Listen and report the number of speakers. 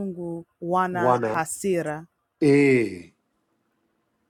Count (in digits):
2